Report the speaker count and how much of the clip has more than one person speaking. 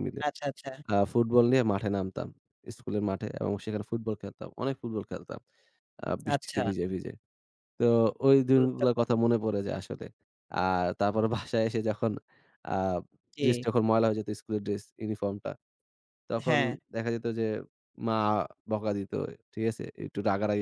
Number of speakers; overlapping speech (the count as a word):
two, about 7%